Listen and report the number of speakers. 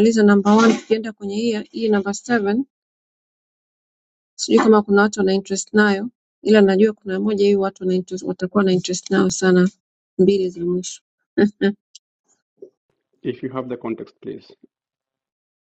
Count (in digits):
2